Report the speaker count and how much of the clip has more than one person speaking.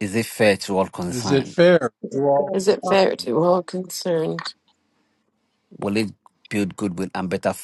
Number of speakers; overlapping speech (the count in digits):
3, about 12%